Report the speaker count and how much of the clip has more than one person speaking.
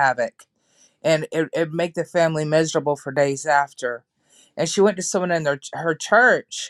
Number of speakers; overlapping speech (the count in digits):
1, no overlap